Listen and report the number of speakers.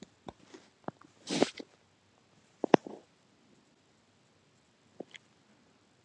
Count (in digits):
0